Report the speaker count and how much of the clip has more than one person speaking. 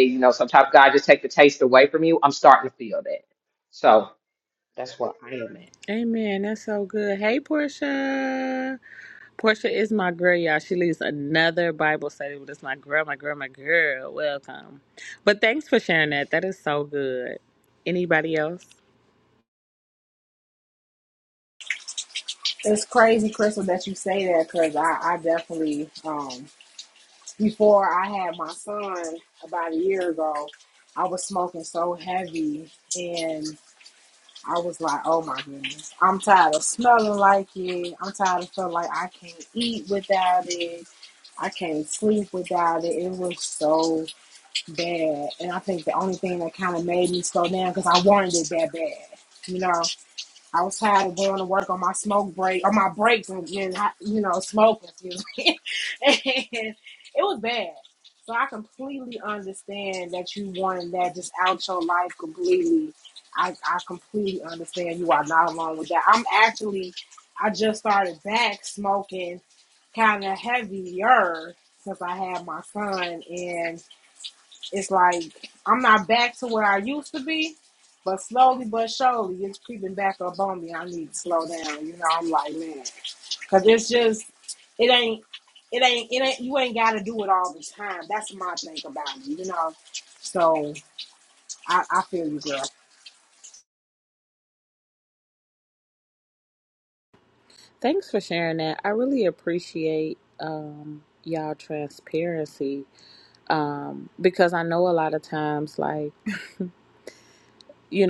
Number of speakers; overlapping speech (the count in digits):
3, no overlap